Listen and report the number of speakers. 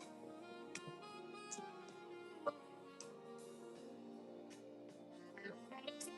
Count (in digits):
0